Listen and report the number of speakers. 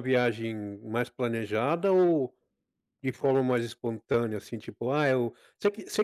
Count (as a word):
one